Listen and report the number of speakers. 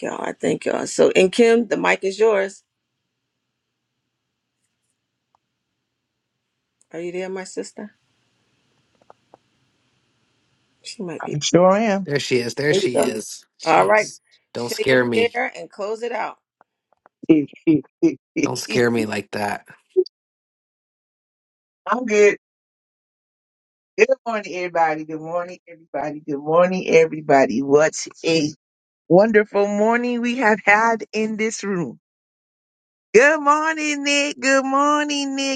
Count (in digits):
3